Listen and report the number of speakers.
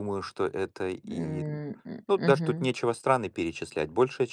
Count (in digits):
2